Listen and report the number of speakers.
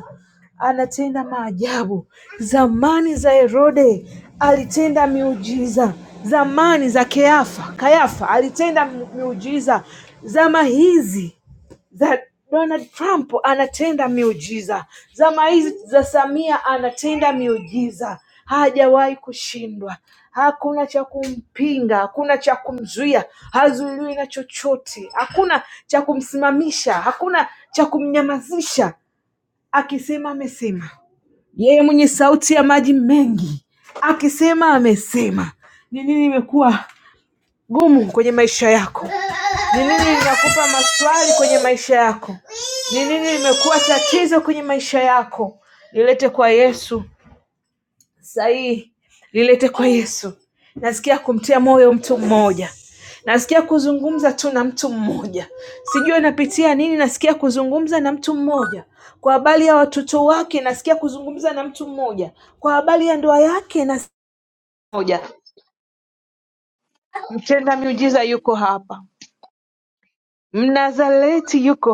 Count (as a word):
one